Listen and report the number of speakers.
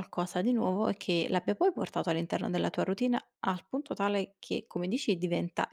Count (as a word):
one